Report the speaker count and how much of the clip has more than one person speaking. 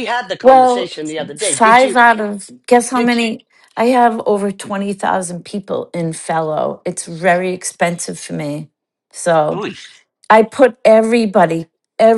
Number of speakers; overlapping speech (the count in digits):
2, about 11%